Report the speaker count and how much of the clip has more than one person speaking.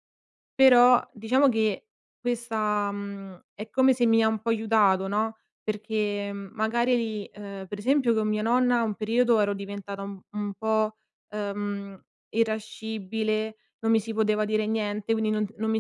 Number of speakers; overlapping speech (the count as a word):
one, no overlap